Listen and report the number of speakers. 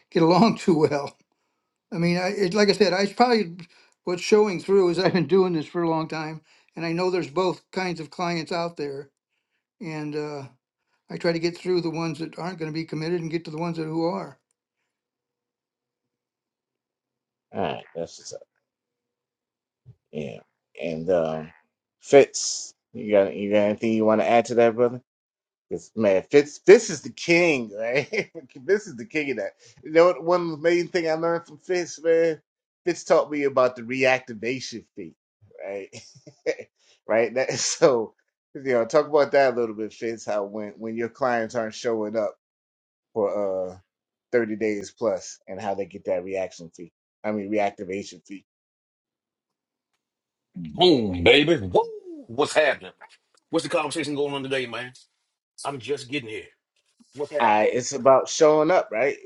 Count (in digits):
3